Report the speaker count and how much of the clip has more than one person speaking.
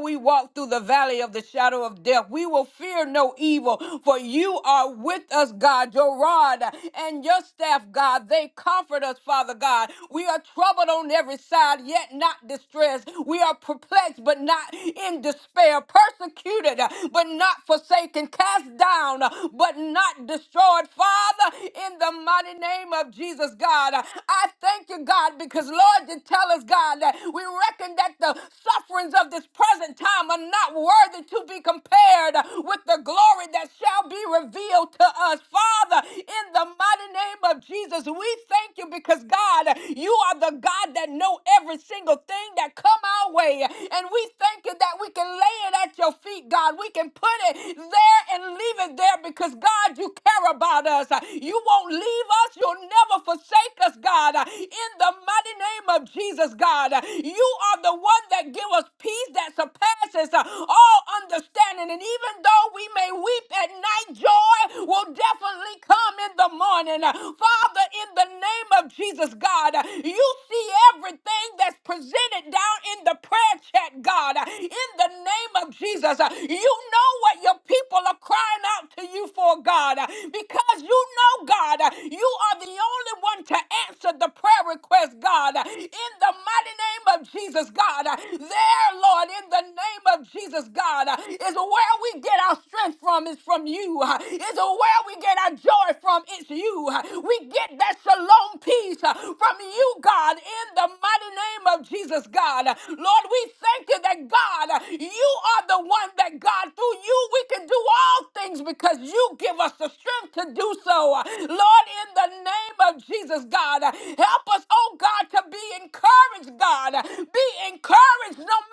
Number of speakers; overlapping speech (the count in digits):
1, no overlap